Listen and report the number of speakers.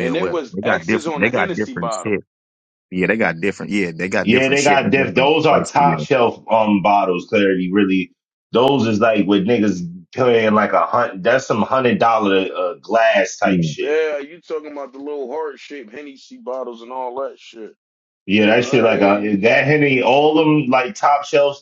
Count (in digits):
3